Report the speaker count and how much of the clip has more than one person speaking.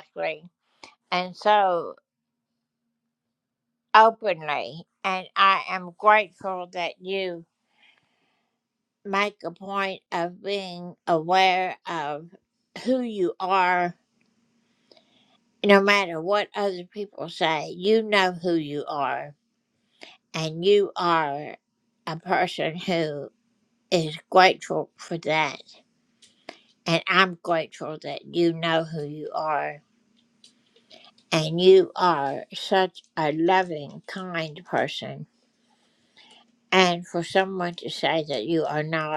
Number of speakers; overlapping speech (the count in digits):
1, no overlap